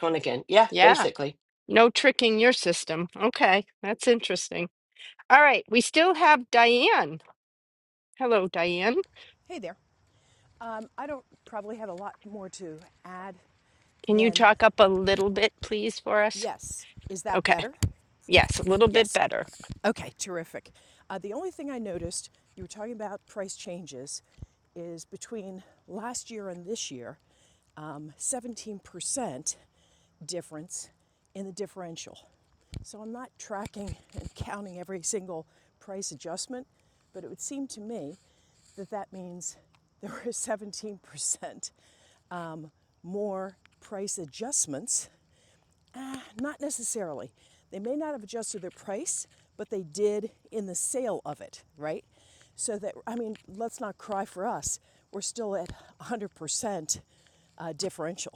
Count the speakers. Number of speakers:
3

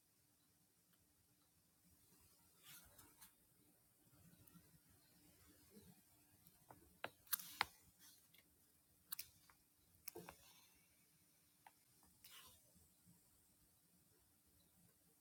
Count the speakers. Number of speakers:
0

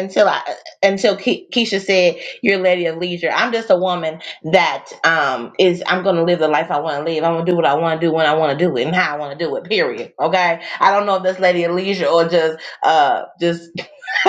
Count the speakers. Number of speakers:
1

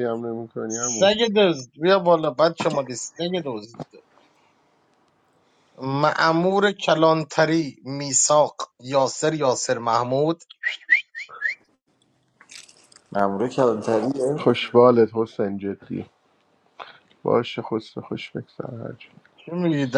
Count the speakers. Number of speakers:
3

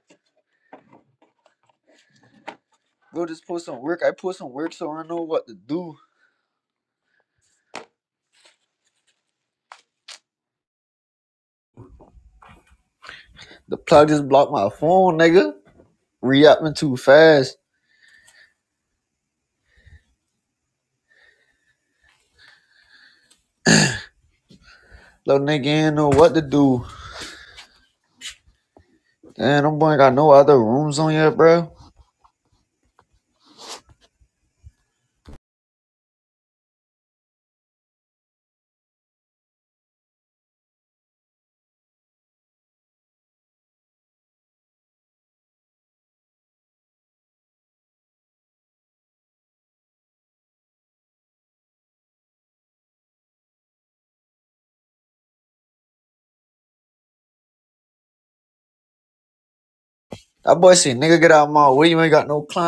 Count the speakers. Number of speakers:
1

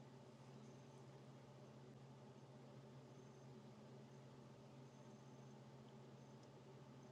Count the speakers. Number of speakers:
0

